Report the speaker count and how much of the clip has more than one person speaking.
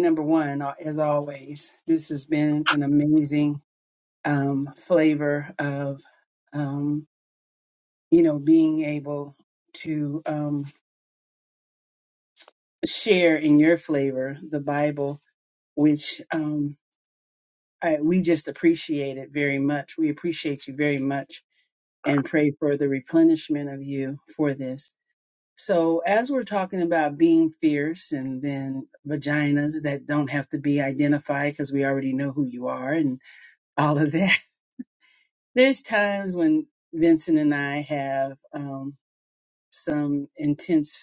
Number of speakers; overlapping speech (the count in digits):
1, no overlap